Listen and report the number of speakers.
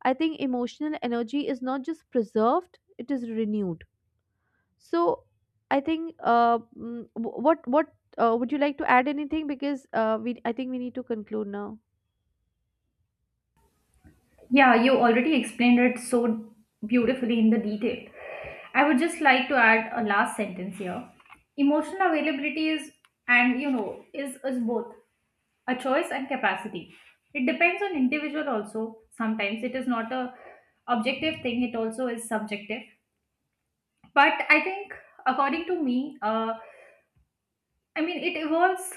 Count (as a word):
two